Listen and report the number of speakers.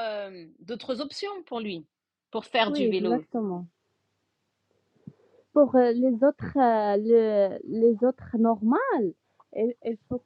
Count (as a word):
two